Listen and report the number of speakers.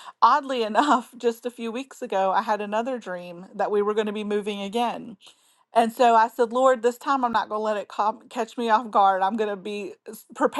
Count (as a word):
one